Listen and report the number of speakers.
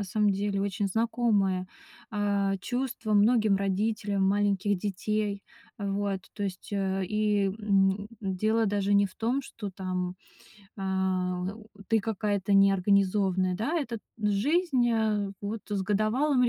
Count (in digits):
1